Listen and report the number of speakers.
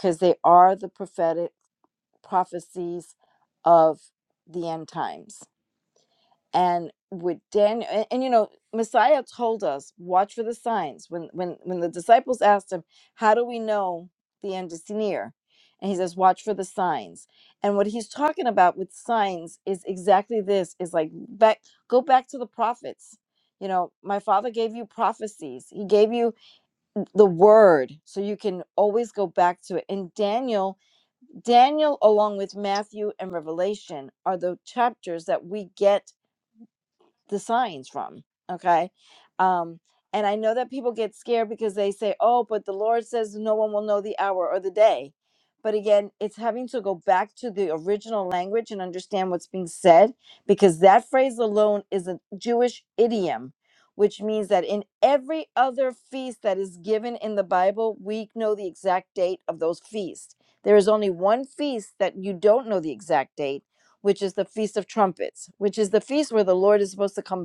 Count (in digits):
1